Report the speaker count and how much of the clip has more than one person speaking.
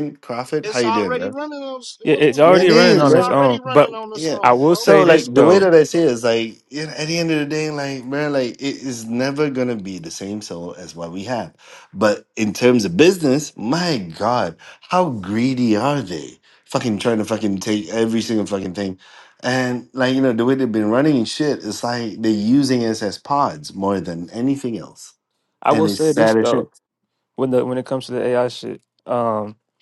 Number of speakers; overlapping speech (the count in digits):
3, about 17%